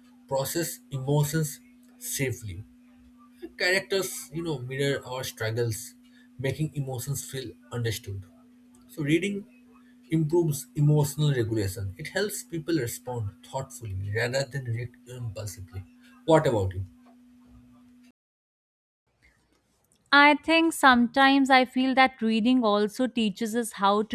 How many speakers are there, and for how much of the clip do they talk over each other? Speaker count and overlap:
2, no overlap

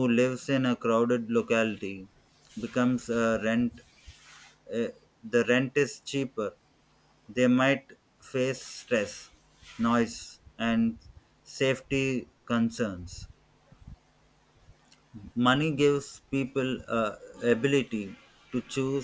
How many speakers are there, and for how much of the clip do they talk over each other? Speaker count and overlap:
1, no overlap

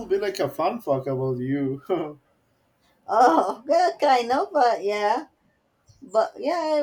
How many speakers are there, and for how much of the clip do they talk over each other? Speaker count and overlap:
2, no overlap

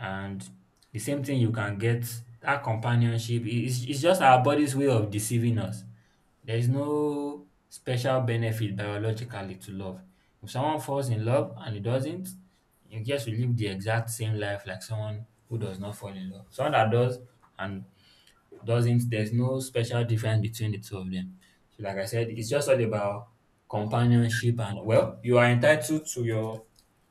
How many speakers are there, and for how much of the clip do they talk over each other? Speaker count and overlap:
1, no overlap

